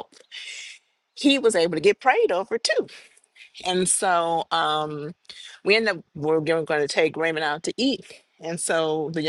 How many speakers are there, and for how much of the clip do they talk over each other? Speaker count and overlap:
one, no overlap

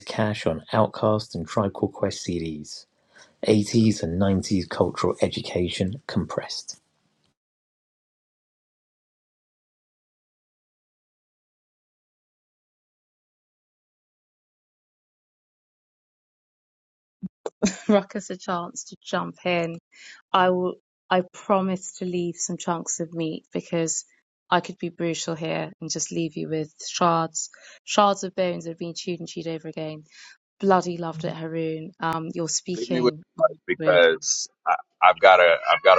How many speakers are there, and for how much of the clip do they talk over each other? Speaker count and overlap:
three, about 2%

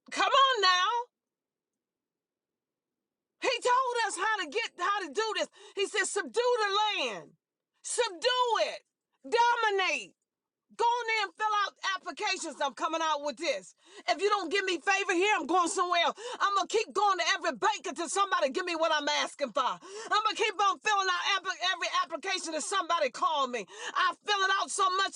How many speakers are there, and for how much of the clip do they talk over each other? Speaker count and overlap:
one, no overlap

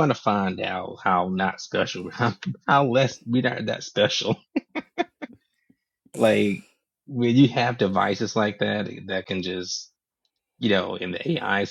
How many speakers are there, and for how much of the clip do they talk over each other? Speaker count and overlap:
one, no overlap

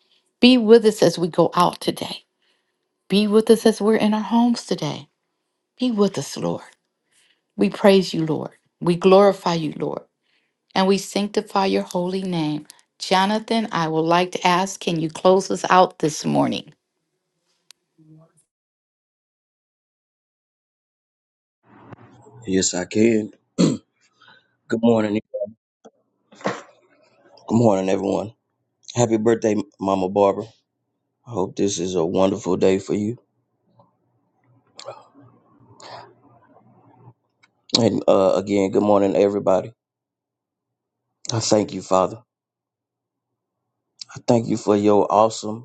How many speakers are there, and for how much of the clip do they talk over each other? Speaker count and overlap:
two, no overlap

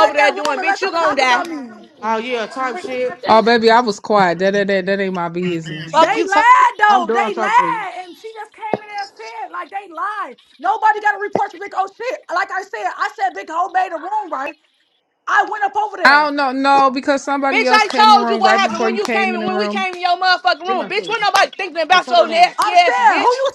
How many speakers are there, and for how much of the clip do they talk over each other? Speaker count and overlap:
four, about 30%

